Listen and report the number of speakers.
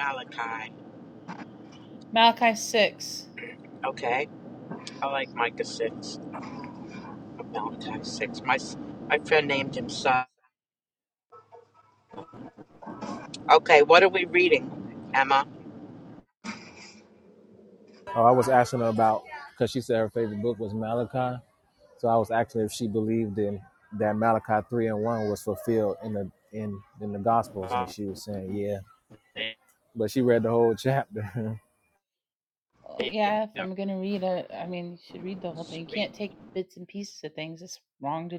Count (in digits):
3